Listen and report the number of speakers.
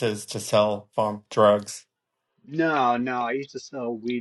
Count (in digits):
2